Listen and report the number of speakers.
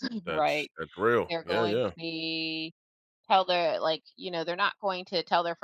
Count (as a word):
two